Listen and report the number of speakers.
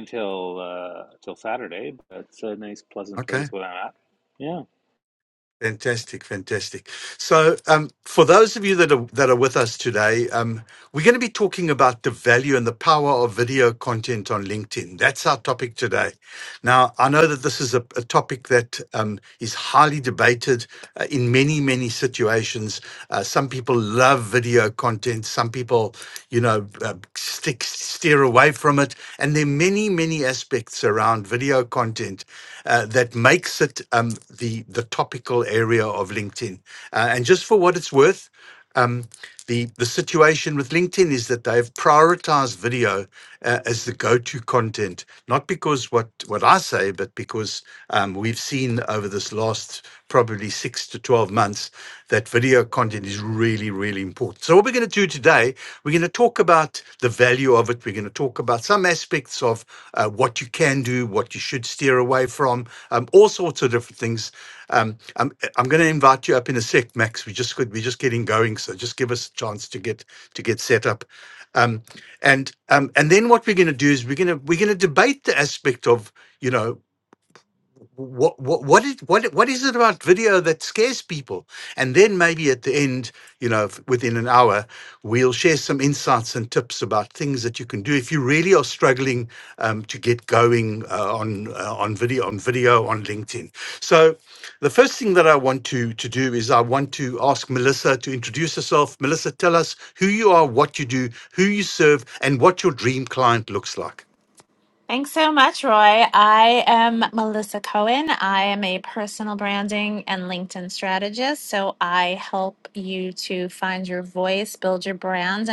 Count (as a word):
three